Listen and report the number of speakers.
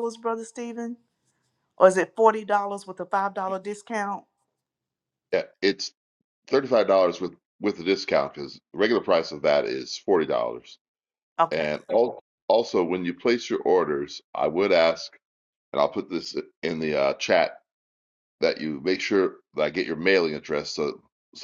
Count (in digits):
2